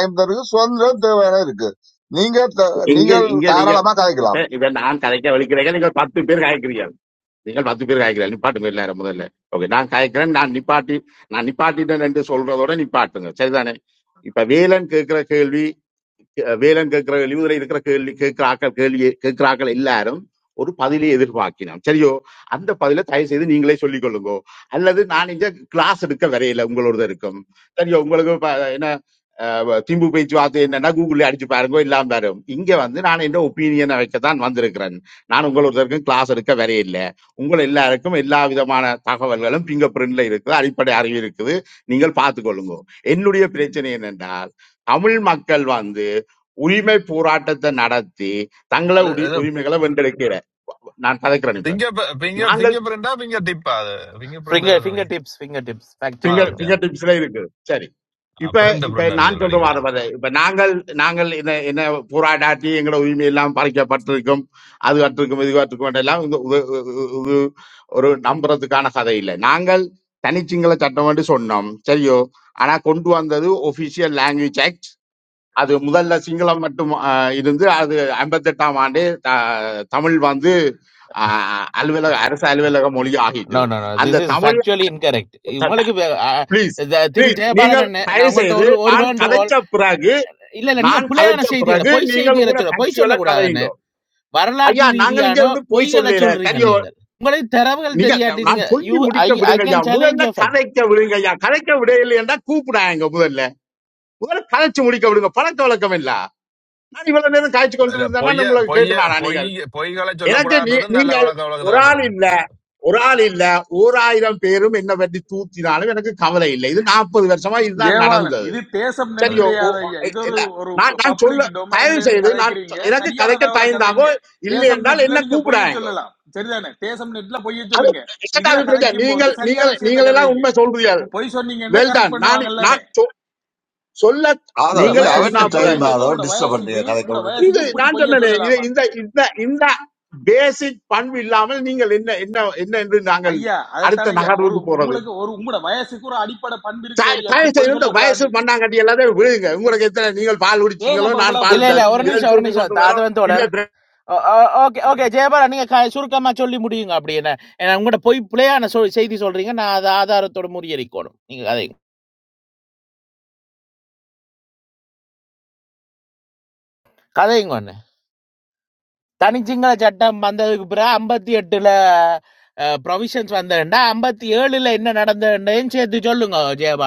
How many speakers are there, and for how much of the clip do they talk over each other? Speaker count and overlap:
5, about 21%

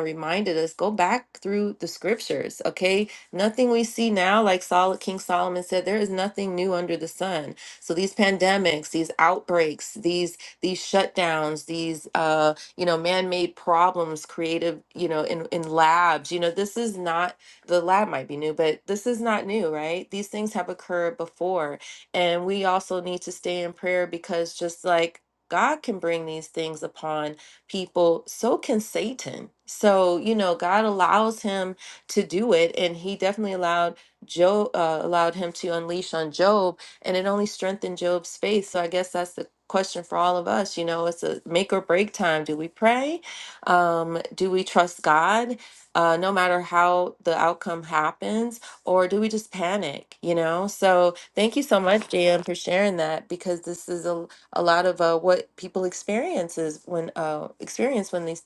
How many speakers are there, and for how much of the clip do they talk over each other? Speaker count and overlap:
1, no overlap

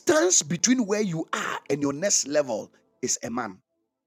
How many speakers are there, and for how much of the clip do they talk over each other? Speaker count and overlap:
1, no overlap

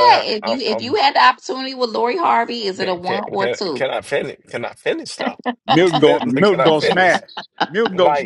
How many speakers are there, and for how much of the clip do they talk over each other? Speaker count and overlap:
3, about 42%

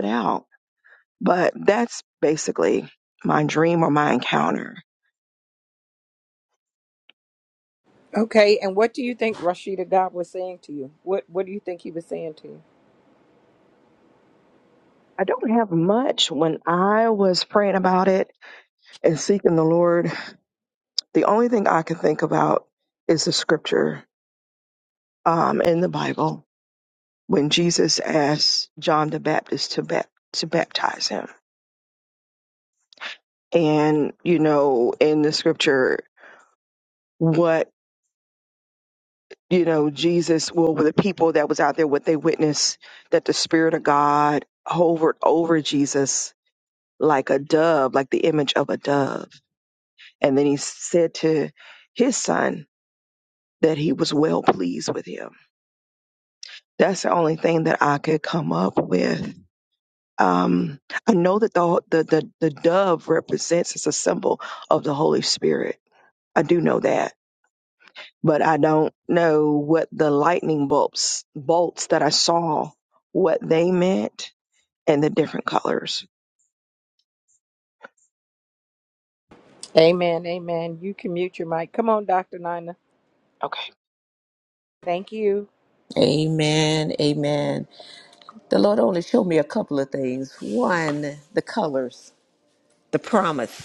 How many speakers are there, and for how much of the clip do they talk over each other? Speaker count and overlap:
3, no overlap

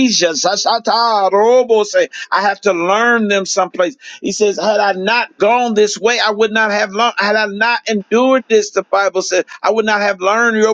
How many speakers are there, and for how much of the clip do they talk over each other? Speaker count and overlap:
1, no overlap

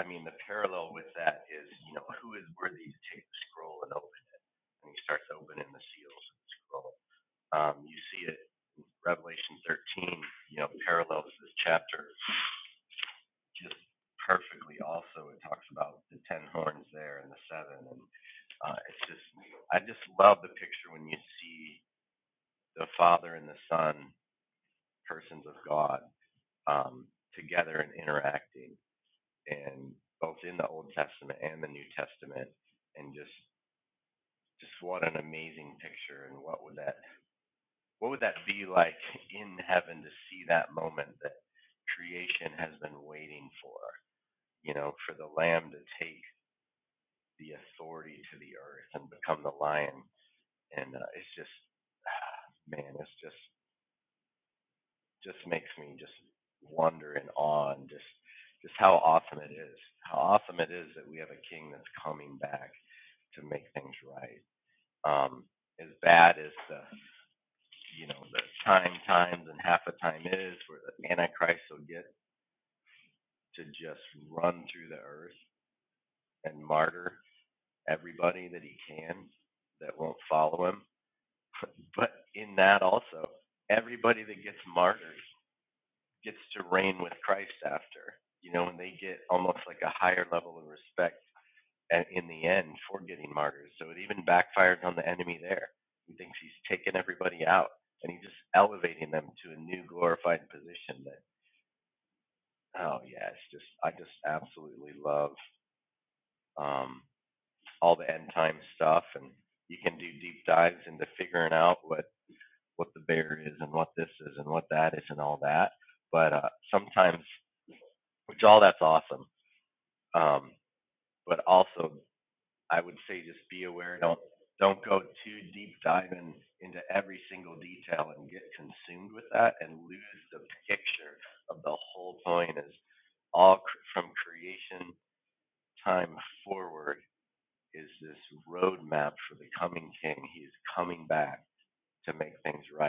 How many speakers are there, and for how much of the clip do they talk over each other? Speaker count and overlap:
1, no overlap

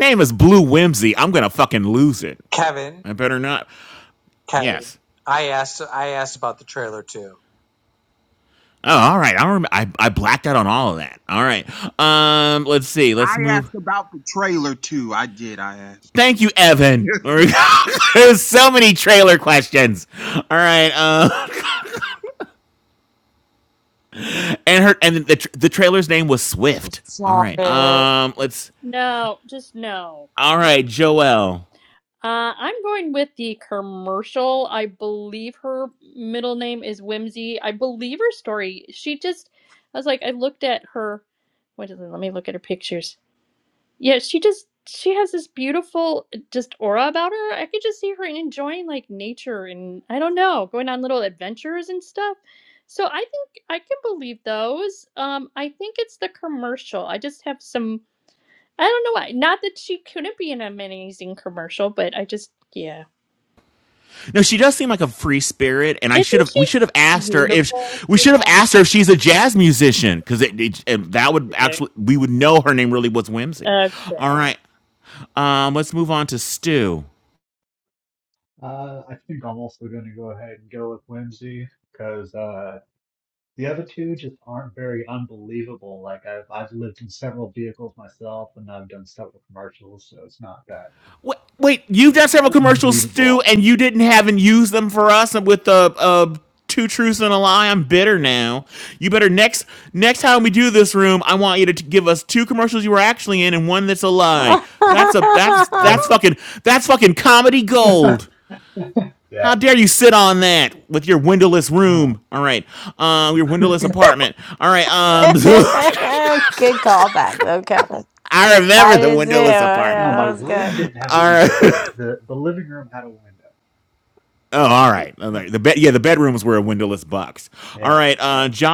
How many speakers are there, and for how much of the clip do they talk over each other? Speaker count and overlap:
6, about 6%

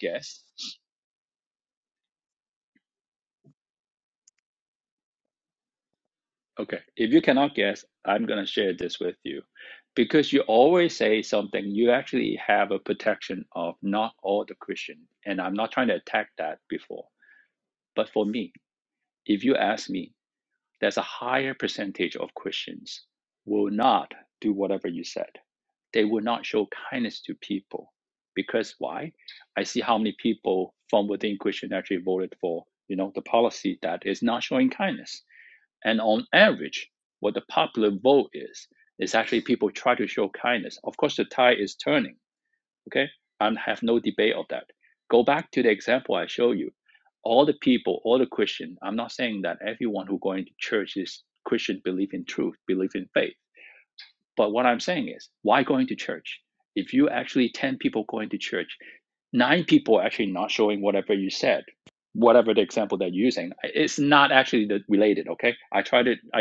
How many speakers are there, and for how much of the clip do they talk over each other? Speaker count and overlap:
1, no overlap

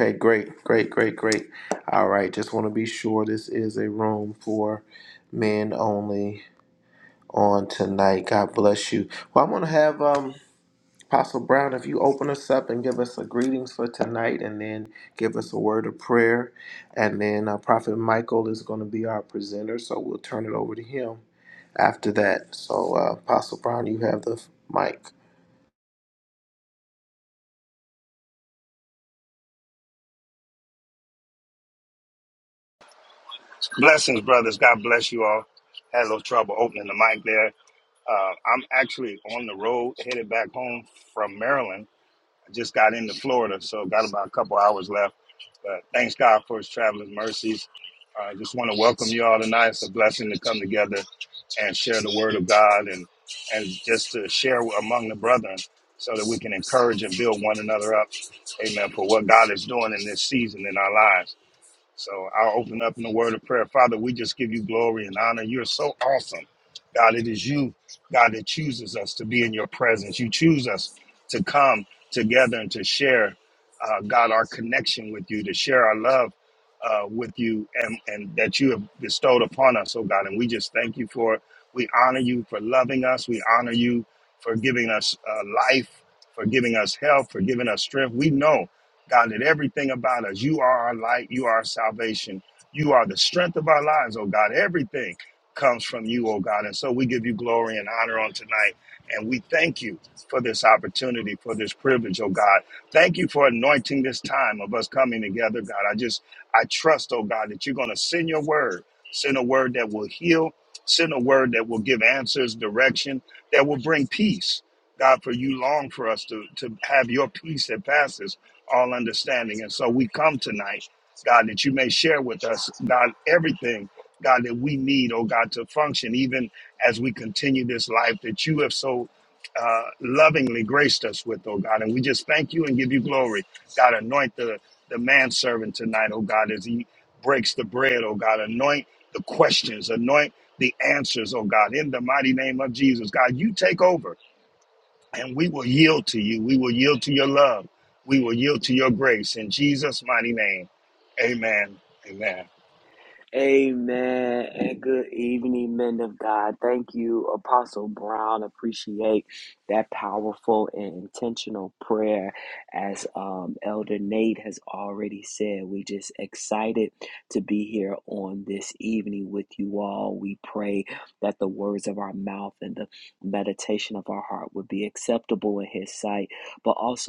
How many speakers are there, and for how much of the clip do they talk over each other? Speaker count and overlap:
3, no overlap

